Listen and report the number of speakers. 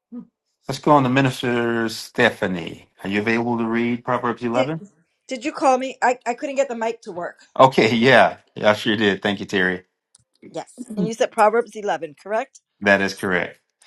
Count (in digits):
2